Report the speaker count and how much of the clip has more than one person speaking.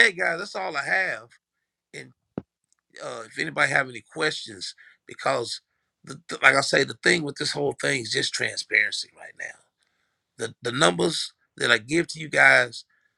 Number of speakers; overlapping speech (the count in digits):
1, no overlap